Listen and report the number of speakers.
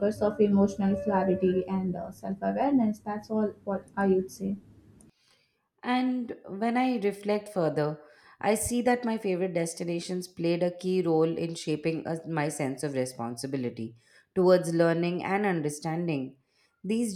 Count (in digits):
2